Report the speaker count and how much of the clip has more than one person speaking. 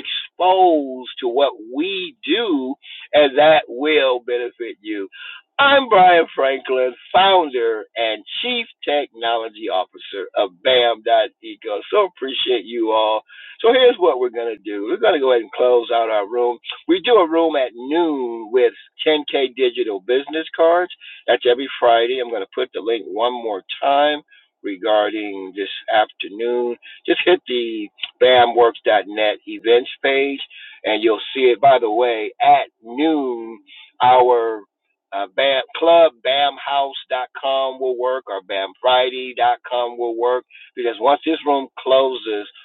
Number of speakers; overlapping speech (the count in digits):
1, no overlap